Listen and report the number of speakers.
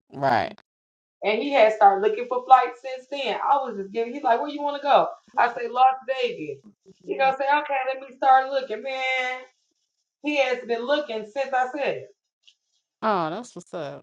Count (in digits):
2